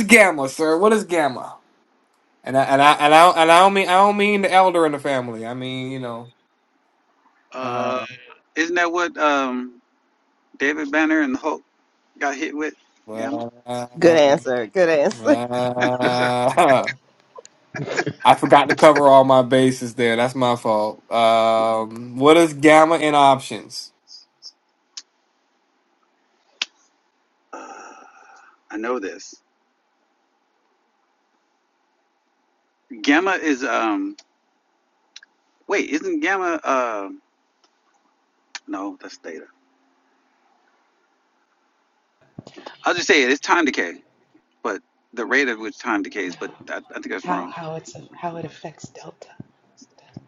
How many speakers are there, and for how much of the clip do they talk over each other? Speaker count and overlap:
4, about 3%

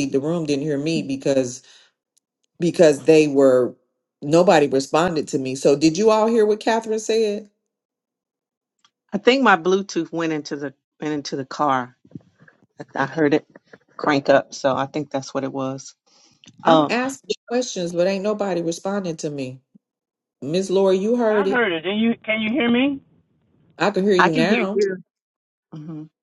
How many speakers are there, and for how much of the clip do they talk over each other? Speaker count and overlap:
3, about 4%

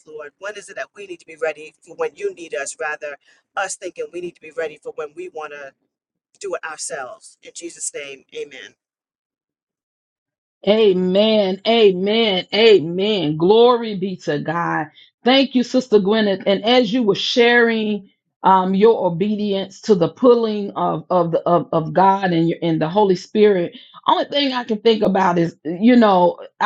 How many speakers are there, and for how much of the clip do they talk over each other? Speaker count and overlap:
2, no overlap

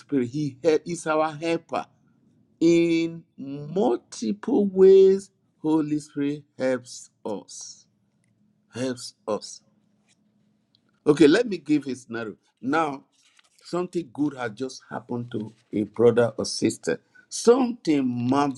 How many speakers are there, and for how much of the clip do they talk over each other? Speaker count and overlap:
1, no overlap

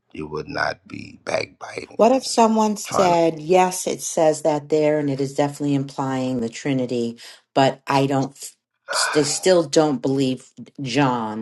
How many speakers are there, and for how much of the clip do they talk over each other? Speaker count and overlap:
2, about 5%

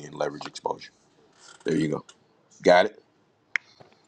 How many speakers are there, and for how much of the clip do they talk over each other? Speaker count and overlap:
1, no overlap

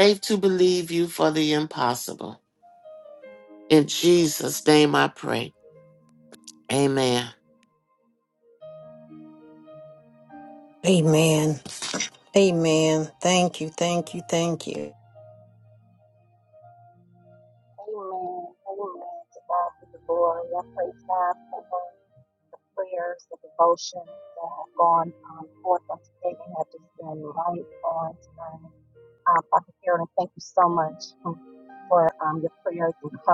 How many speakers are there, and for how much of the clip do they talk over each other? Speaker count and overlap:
3, no overlap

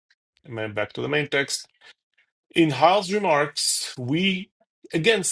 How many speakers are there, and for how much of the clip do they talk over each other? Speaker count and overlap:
1, no overlap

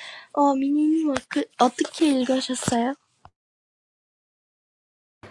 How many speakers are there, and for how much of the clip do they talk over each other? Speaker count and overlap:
1, no overlap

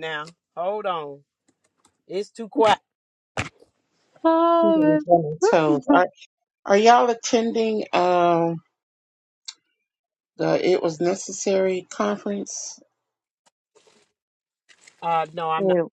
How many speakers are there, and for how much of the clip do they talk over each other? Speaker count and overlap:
3, about 1%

